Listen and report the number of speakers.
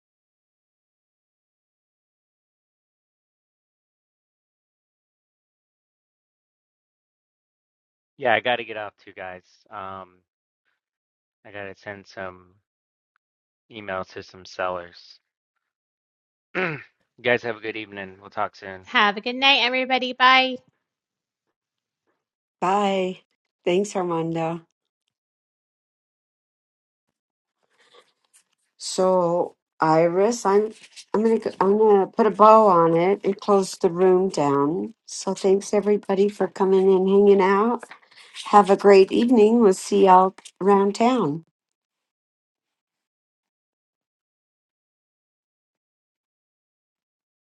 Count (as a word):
three